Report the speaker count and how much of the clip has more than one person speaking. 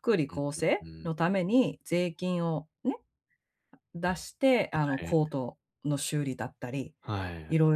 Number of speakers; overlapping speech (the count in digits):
2, about 10%